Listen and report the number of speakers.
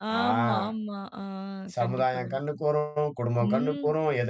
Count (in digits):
2